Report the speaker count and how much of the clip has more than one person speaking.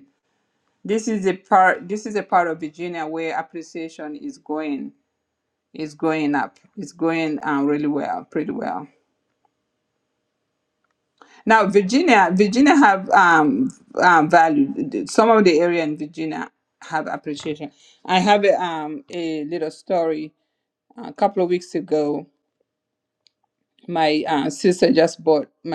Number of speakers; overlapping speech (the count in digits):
1, no overlap